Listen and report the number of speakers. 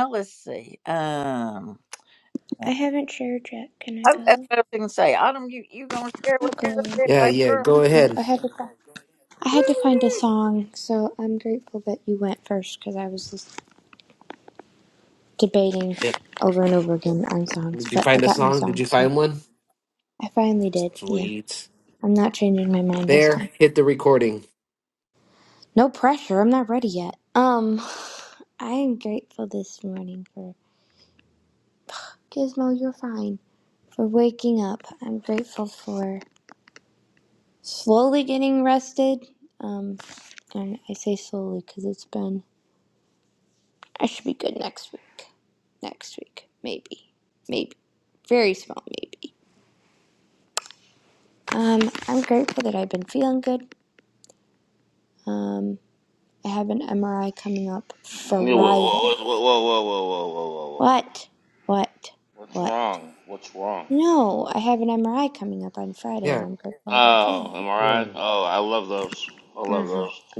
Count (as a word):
four